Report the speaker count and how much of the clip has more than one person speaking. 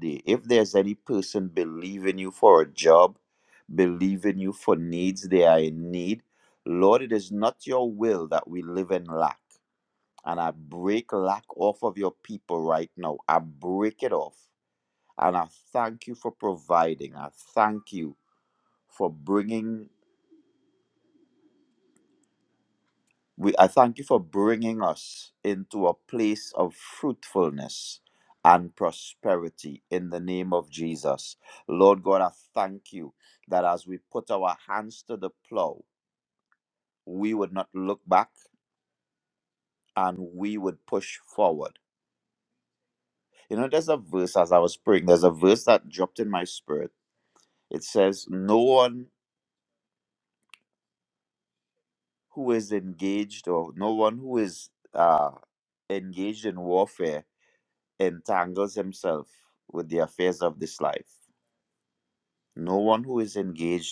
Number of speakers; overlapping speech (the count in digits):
1, no overlap